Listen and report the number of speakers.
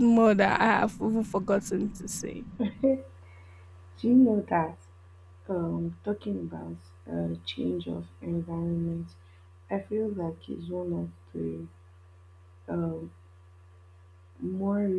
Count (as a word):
two